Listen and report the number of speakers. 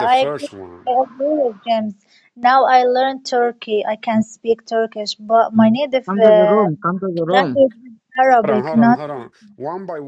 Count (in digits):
3